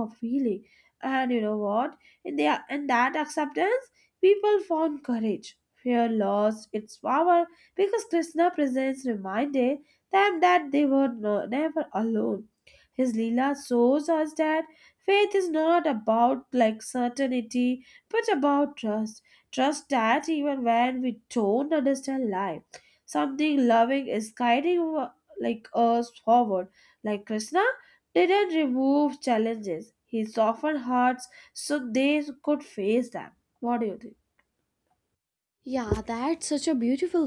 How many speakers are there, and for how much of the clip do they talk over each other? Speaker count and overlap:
2, no overlap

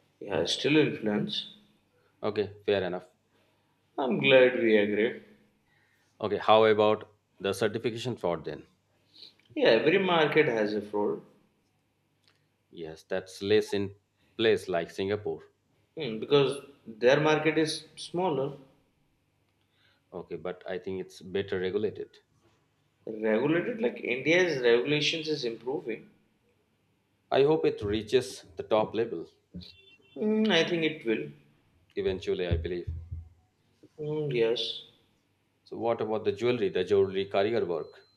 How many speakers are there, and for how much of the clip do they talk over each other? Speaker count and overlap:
2, no overlap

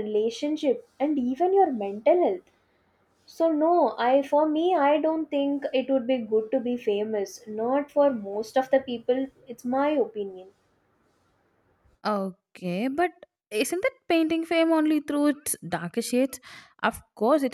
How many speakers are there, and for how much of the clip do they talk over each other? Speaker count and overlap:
2, no overlap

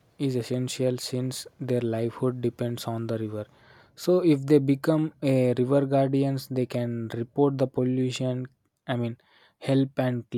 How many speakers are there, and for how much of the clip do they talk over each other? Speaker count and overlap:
1, no overlap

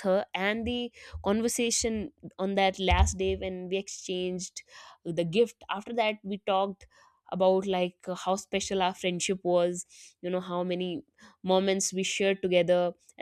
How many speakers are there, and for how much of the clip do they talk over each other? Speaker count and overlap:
1, no overlap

